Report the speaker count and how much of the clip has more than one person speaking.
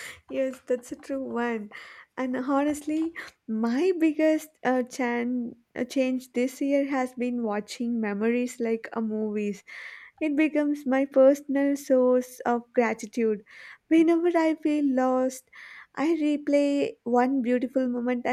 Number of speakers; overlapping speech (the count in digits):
1, no overlap